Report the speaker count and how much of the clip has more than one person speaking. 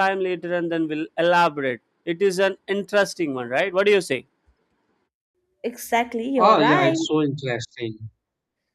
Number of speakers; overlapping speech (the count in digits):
3, about 8%